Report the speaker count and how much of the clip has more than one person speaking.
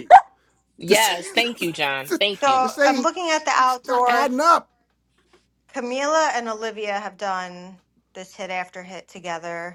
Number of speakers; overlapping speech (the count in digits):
3, about 15%